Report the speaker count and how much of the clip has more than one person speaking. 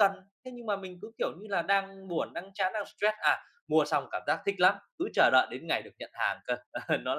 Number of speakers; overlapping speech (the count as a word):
one, no overlap